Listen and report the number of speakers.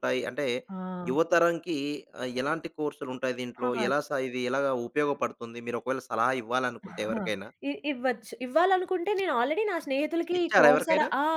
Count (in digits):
2